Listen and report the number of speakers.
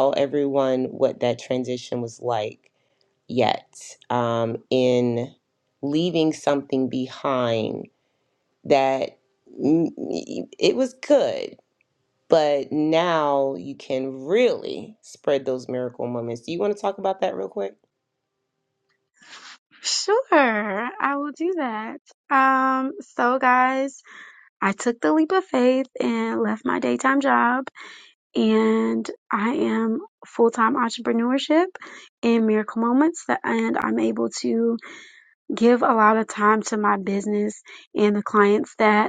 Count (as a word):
two